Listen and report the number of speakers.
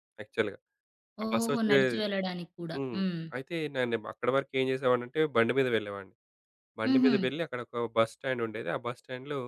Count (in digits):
2